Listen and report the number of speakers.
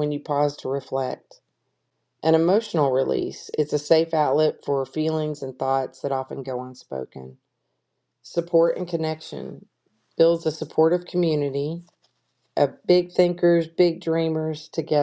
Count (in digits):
1